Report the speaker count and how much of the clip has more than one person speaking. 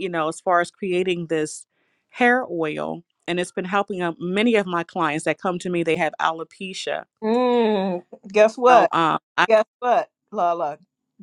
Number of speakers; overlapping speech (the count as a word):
two, about 2%